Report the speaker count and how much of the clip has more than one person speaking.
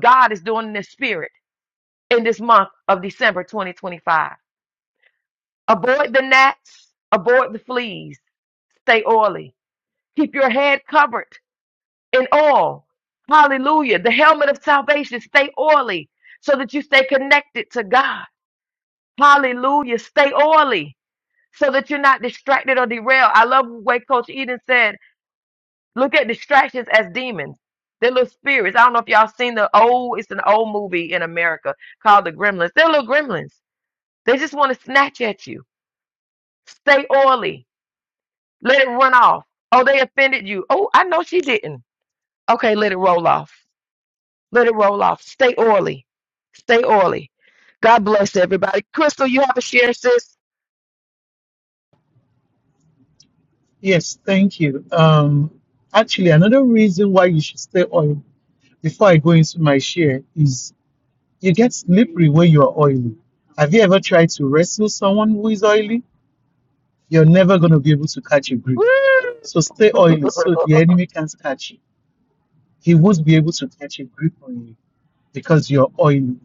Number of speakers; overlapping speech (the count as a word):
two, under 1%